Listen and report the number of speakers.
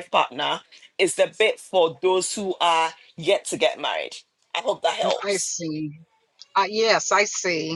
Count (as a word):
two